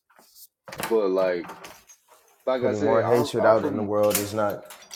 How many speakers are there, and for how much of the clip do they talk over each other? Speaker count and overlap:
two, about 25%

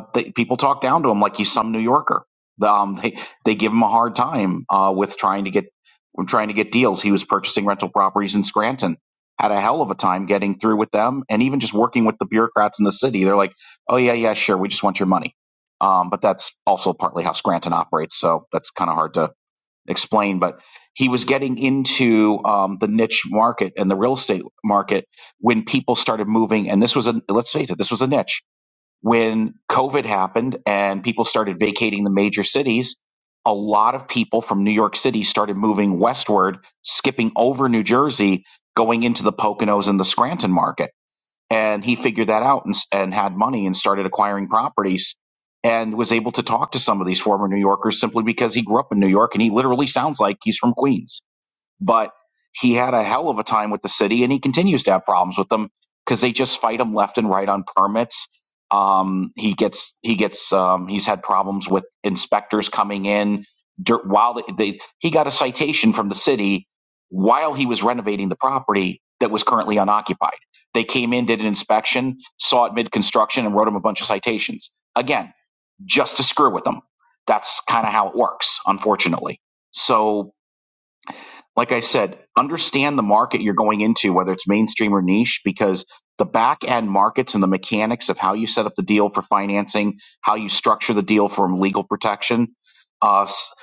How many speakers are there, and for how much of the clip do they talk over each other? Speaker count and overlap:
one, no overlap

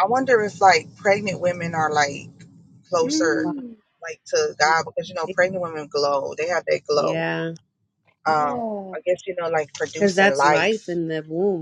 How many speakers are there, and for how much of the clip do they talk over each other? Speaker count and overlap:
three, about 20%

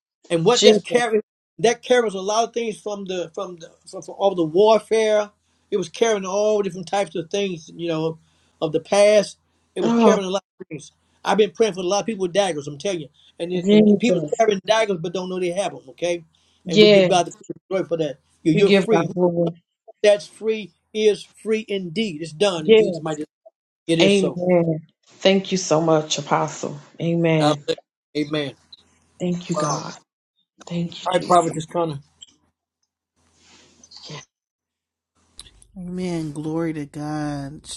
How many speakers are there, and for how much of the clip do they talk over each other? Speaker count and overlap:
three, about 11%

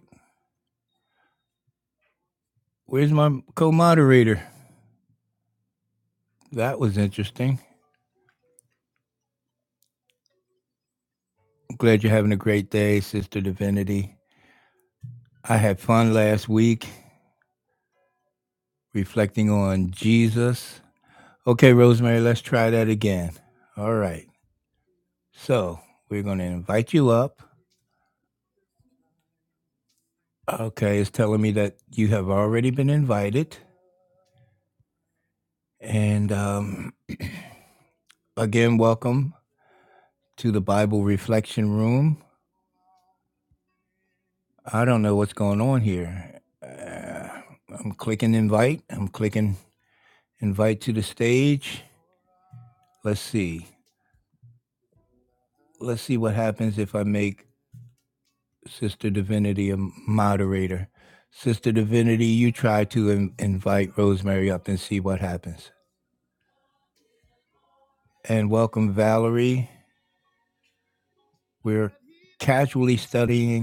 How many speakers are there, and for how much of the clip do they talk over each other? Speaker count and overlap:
one, no overlap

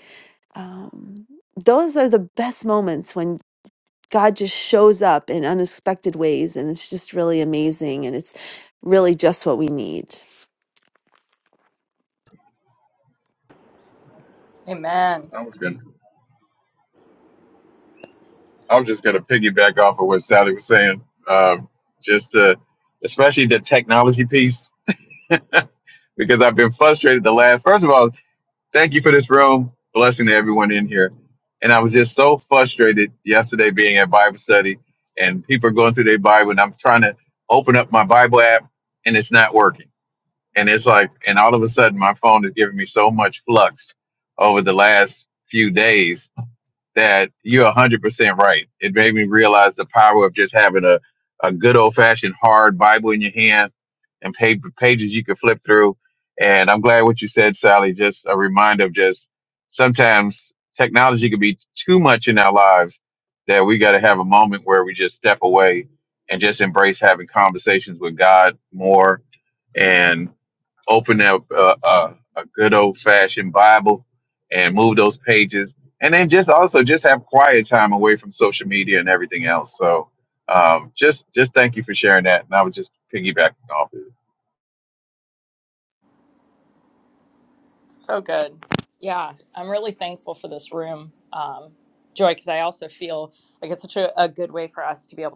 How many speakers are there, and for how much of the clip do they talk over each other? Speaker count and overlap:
three, no overlap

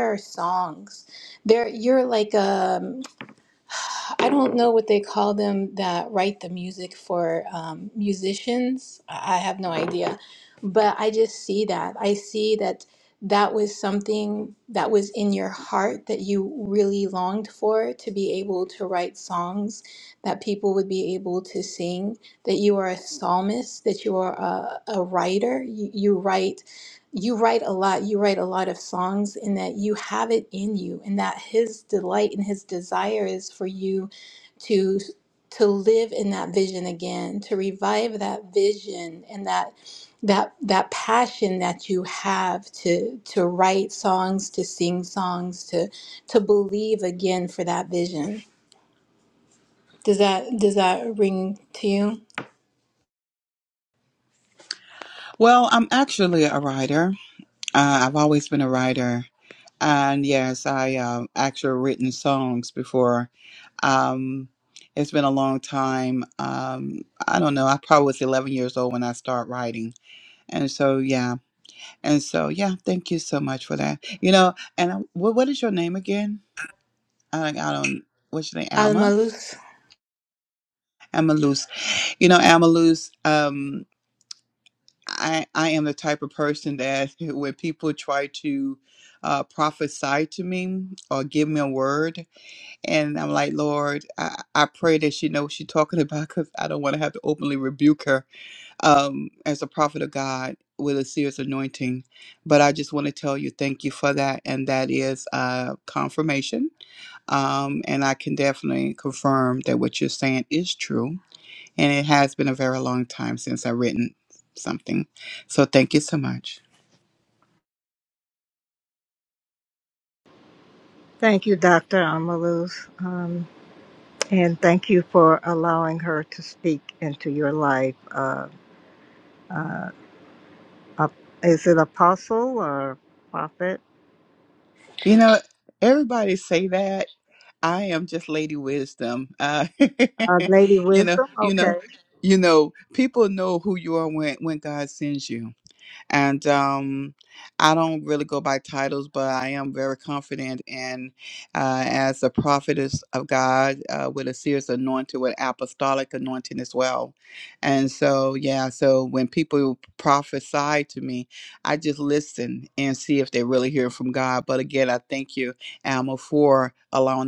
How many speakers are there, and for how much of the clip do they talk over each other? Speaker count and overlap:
three, about 1%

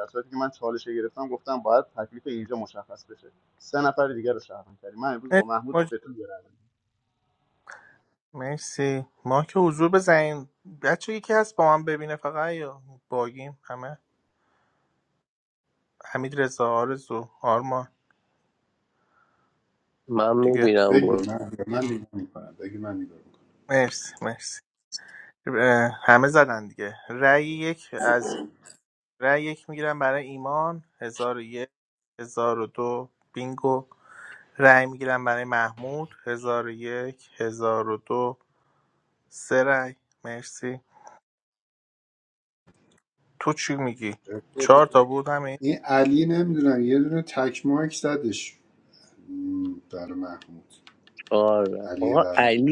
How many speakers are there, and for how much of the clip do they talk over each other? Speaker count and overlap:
four, about 4%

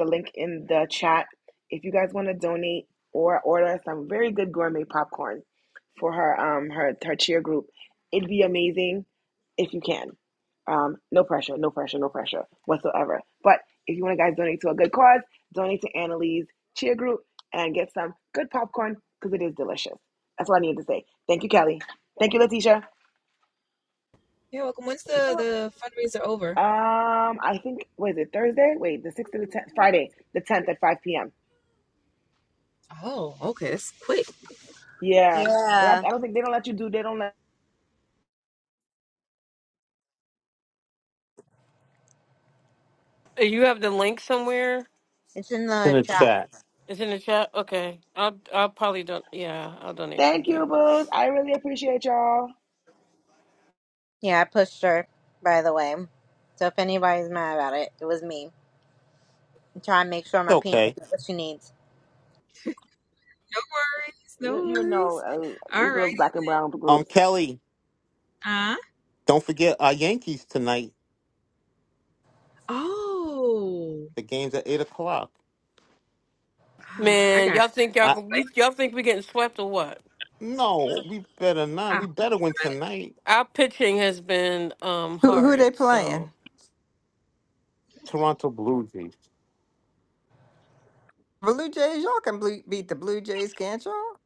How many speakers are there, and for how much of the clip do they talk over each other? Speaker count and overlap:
six, about 6%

